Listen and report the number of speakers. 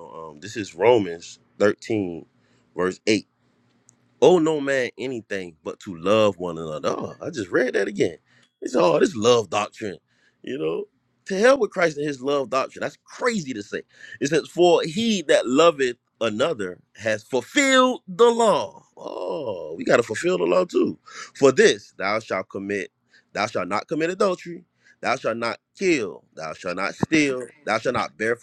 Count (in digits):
1